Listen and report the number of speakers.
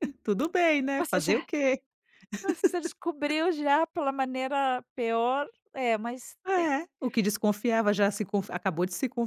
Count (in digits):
2